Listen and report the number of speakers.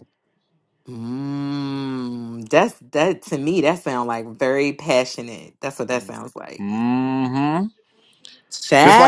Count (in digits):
2